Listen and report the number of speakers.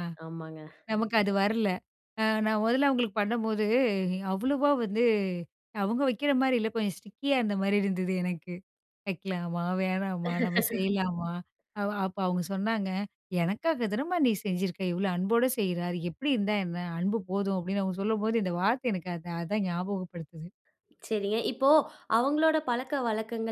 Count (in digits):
2